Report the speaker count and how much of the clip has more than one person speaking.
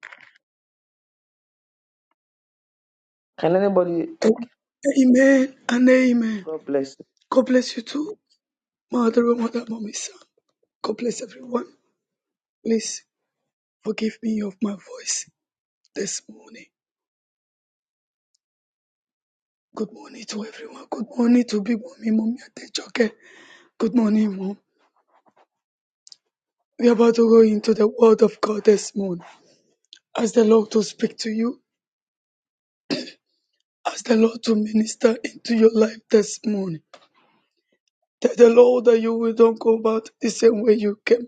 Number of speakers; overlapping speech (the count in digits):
2, no overlap